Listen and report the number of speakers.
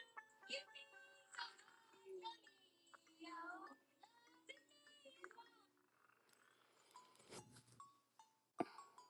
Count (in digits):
0